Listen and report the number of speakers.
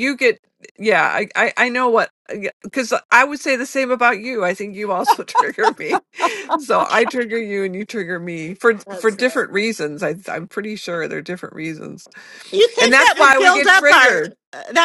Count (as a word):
two